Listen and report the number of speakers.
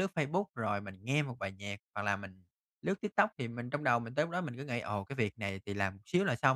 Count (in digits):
1